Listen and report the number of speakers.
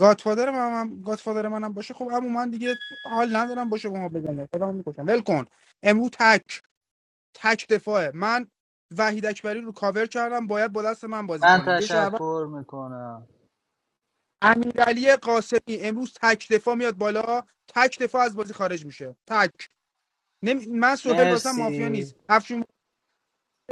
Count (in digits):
2